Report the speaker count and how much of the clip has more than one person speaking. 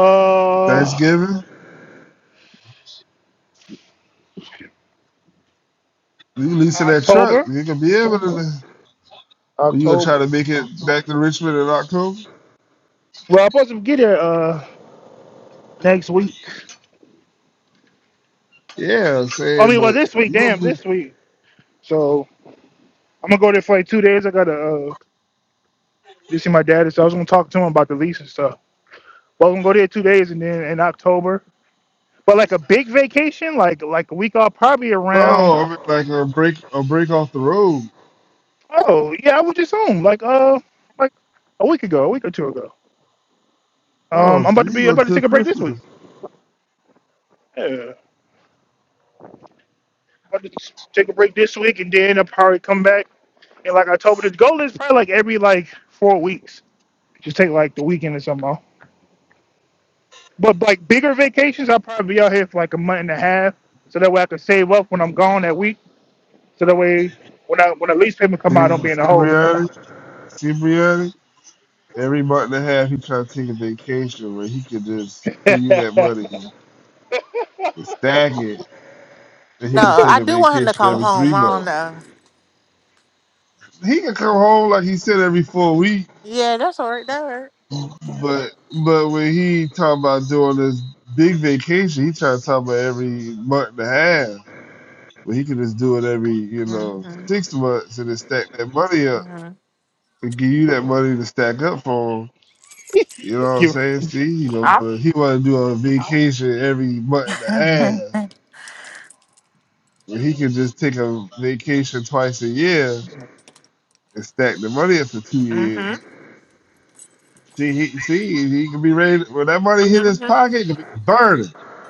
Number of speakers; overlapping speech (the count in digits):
3, about 8%